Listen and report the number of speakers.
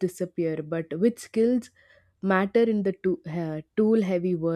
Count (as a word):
one